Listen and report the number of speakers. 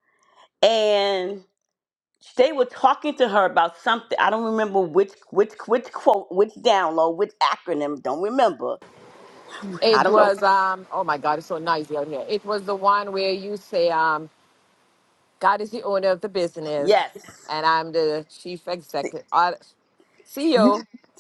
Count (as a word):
two